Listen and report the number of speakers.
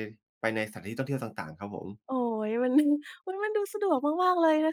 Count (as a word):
two